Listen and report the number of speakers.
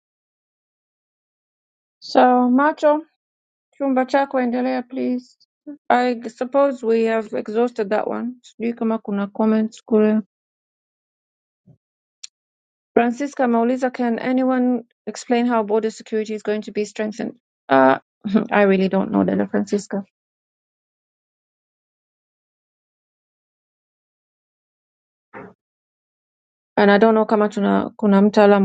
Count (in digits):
1